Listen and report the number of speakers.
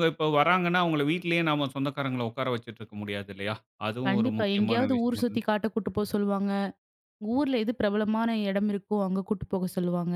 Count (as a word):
two